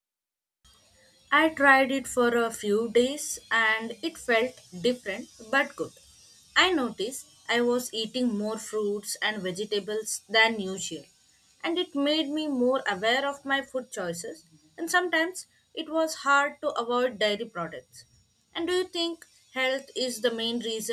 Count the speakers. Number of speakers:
one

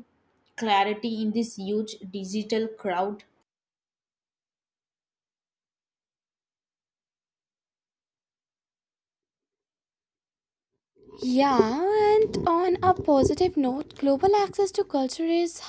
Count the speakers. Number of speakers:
two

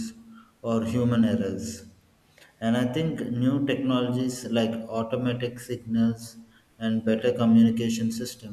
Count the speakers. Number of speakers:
one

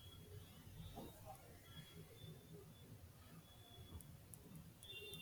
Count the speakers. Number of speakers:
zero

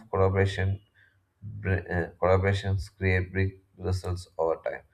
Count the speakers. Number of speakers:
one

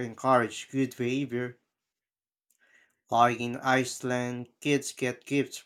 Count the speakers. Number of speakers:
one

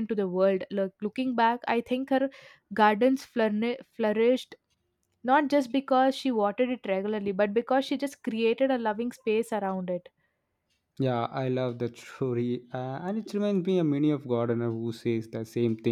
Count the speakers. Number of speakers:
two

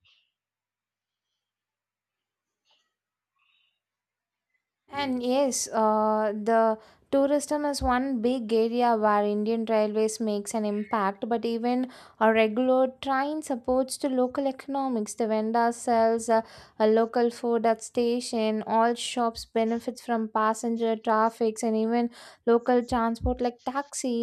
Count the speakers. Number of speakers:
one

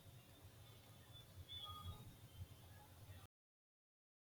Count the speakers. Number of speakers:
zero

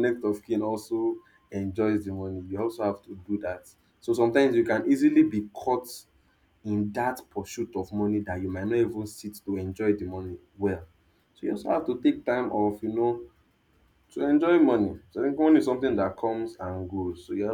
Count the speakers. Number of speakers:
one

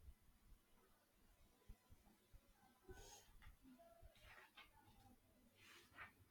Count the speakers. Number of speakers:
zero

